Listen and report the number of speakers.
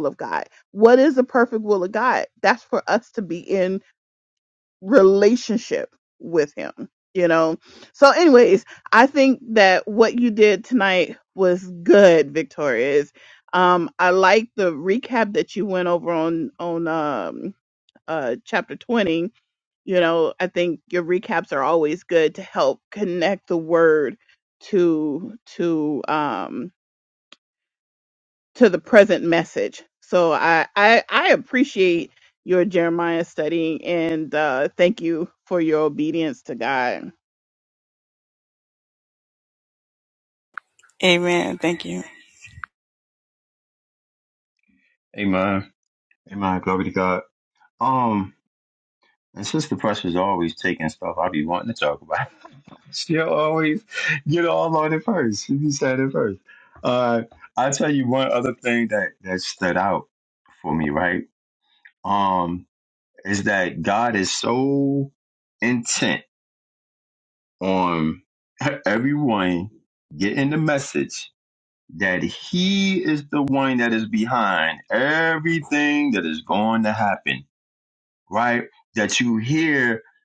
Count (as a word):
three